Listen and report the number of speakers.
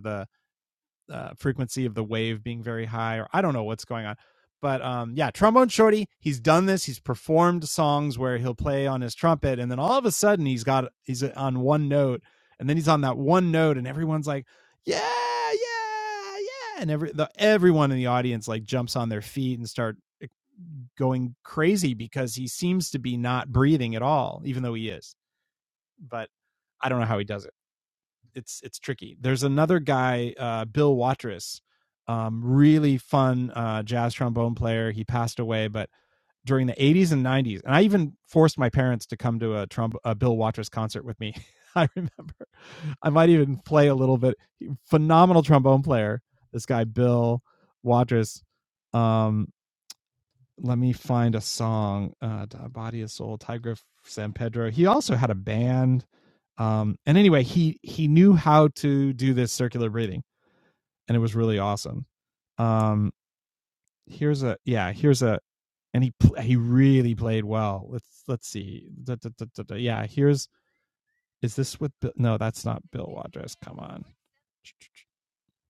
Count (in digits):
1